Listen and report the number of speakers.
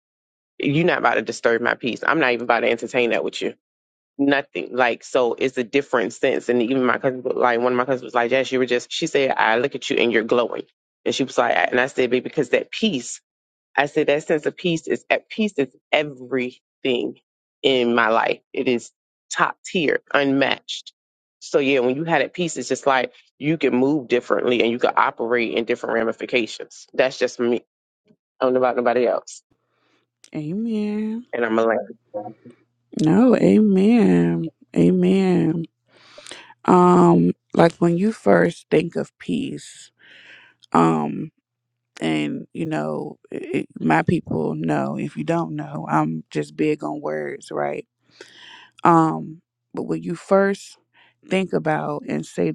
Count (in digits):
2